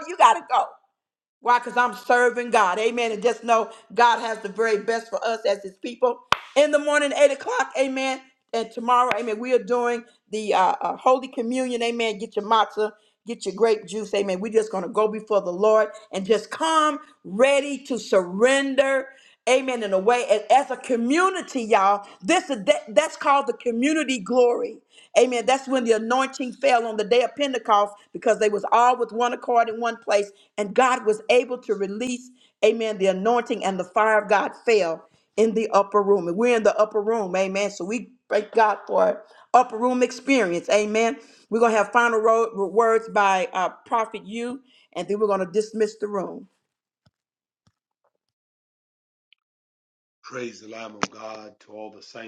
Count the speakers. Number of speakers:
two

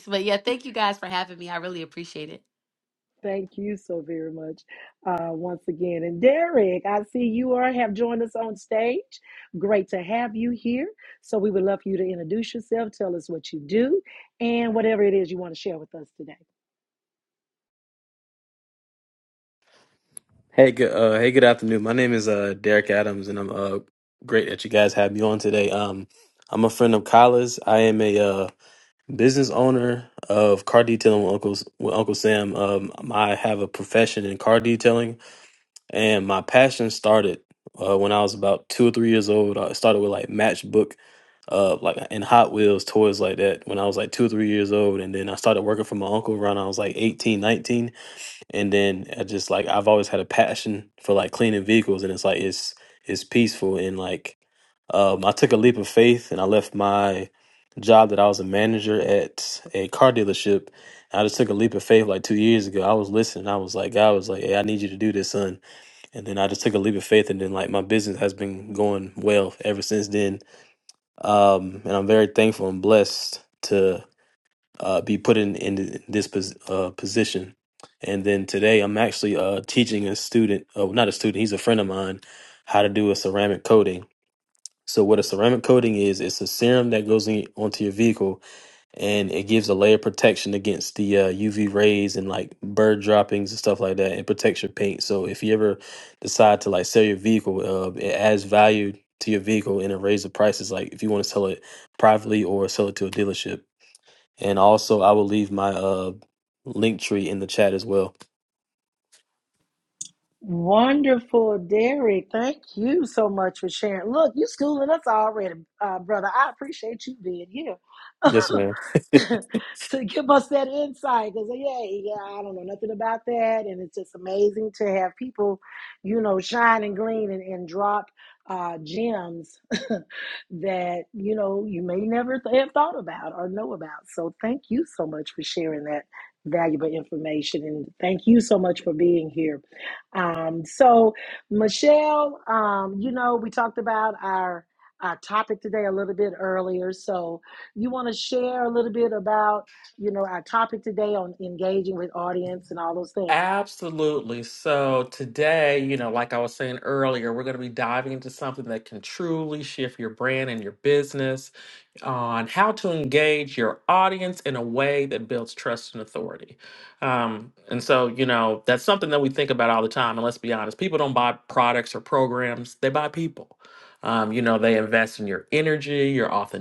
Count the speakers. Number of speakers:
four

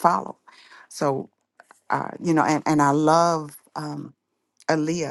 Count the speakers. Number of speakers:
one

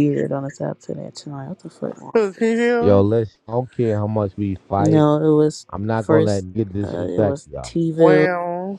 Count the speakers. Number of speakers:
three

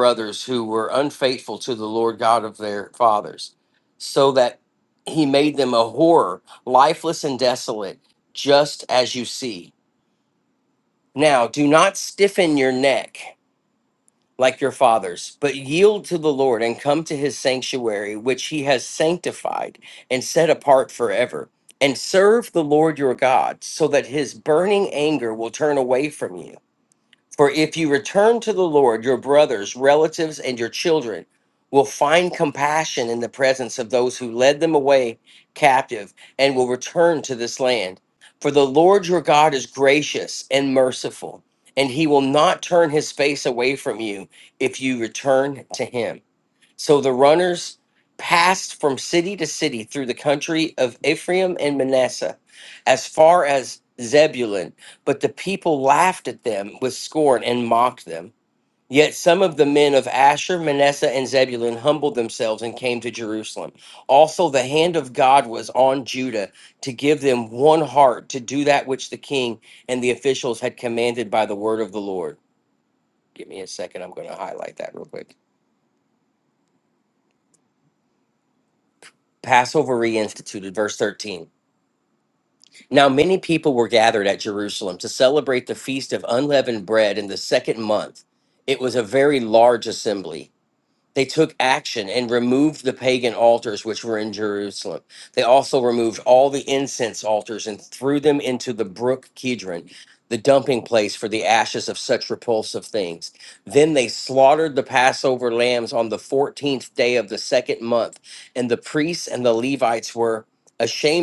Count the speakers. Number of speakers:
one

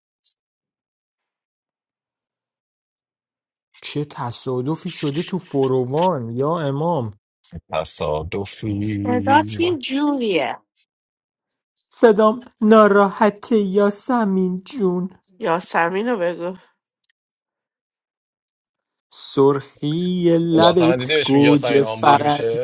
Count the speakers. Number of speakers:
three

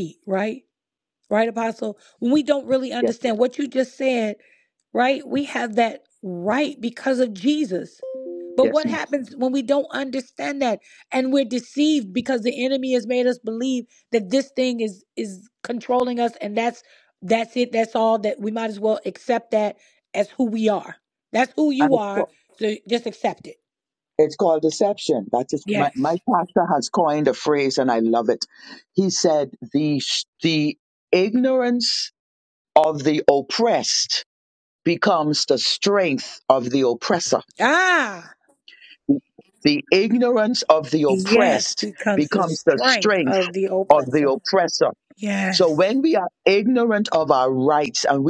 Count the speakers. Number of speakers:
two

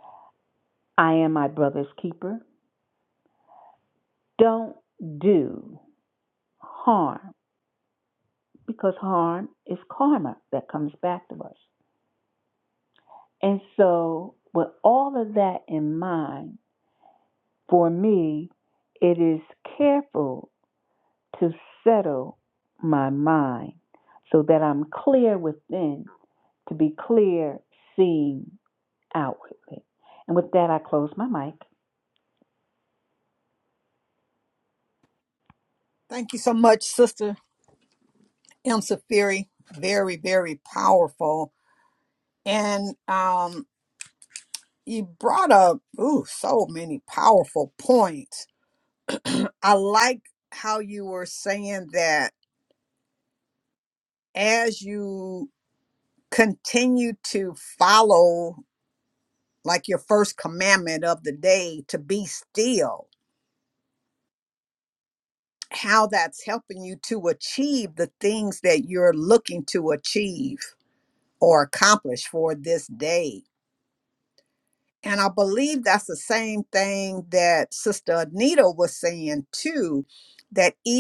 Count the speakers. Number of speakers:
two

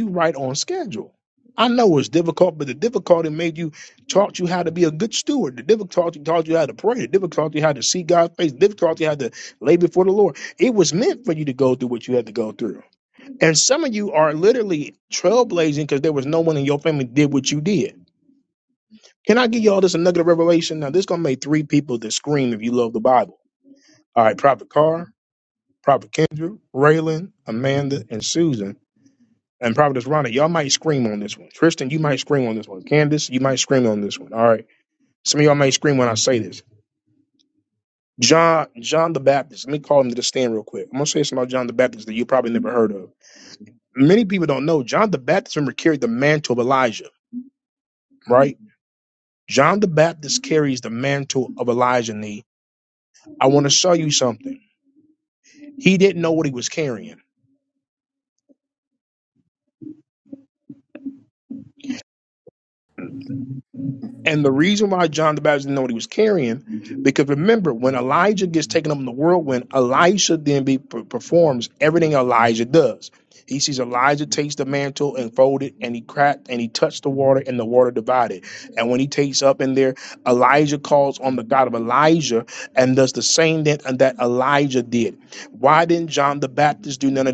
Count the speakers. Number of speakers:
one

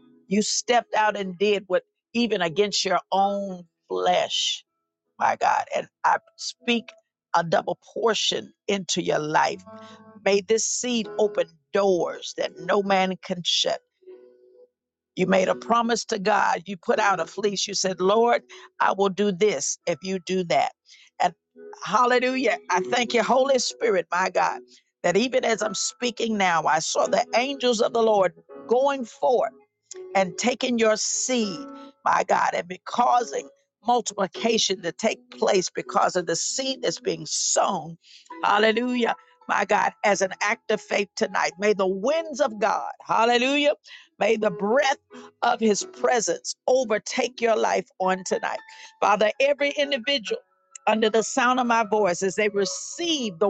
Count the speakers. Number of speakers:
one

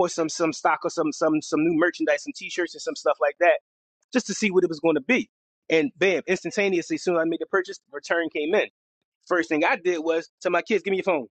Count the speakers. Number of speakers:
one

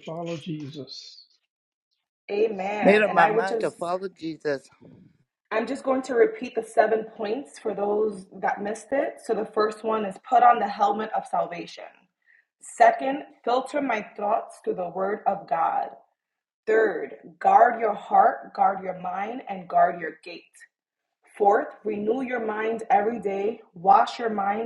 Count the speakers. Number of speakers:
three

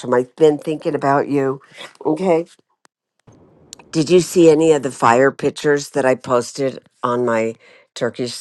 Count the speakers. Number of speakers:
one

